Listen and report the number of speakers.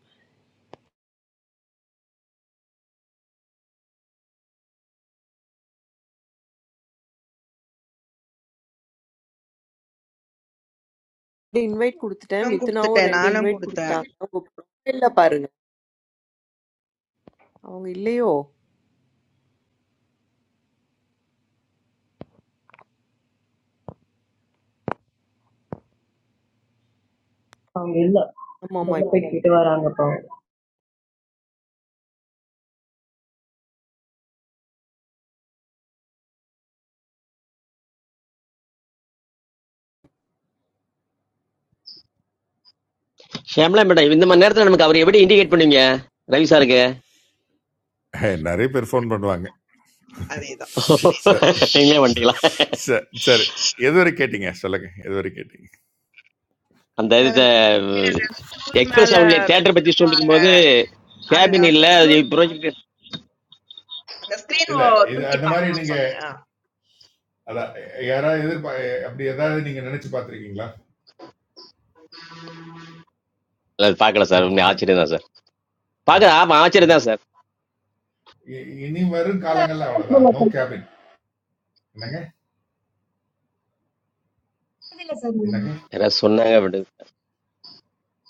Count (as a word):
six